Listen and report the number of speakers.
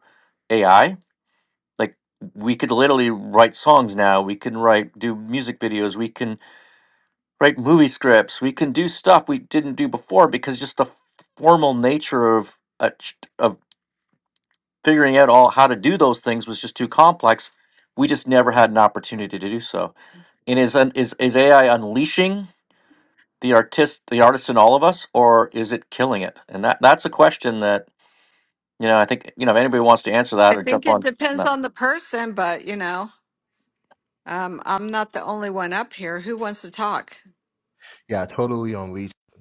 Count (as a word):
three